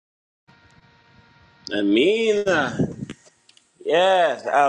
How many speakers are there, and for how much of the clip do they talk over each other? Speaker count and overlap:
1, no overlap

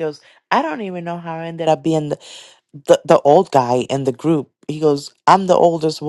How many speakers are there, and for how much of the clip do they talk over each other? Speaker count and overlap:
1, no overlap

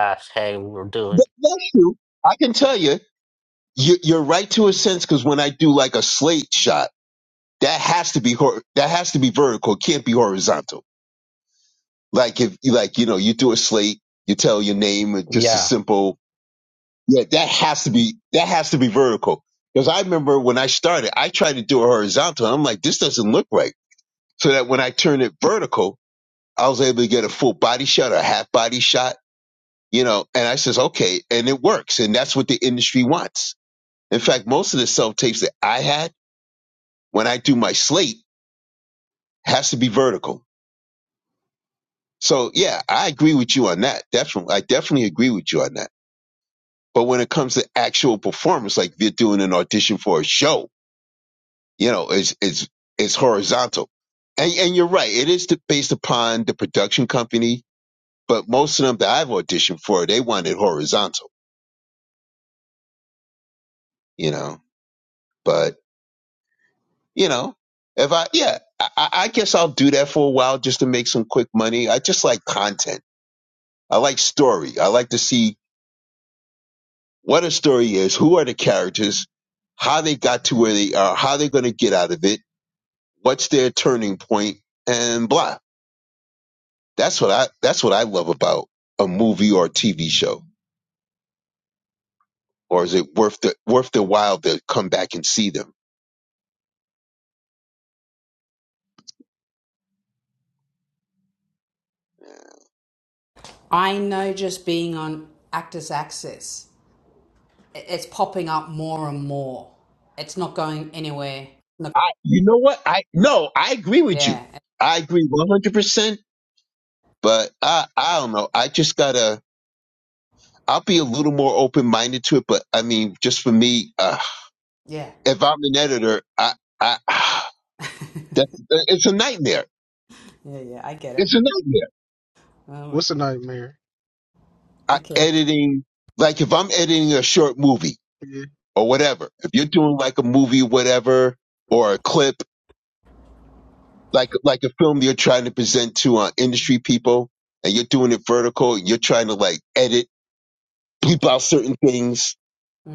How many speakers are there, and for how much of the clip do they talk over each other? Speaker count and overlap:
4, about 1%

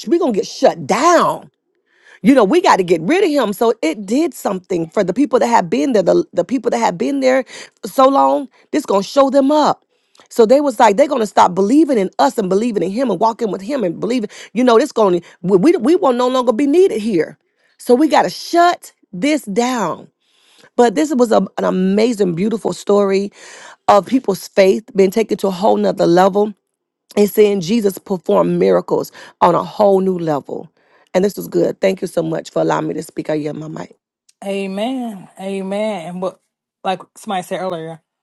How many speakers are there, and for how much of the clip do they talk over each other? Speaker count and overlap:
2, no overlap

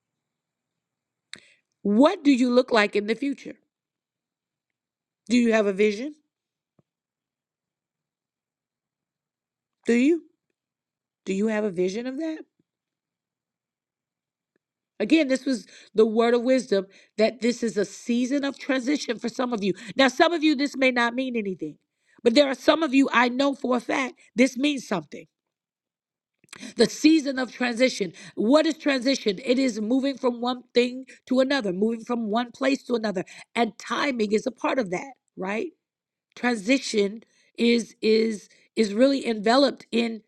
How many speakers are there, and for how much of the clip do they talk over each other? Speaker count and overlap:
1, no overlap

